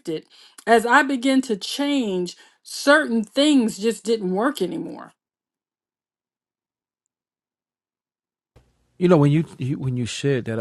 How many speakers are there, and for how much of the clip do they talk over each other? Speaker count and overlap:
2, no overlap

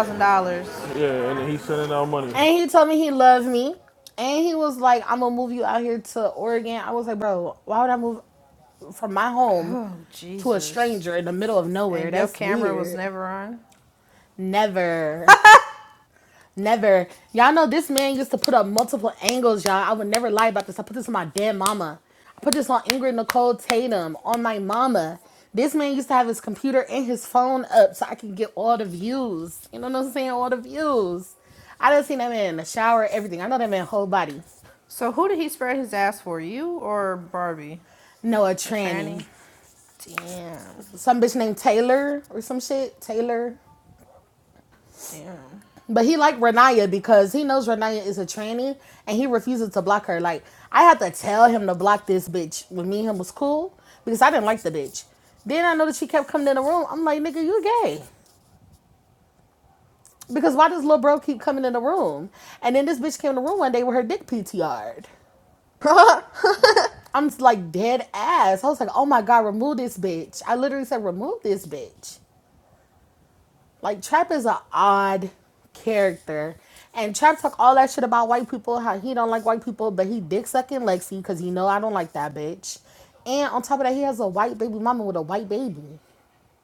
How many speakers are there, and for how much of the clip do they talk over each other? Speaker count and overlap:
3, about 3%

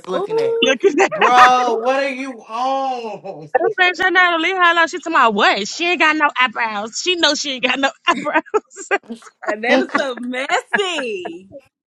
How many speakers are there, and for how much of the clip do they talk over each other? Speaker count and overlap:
3, about 5%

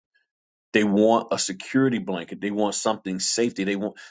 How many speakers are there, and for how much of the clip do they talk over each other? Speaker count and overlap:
1, no overlap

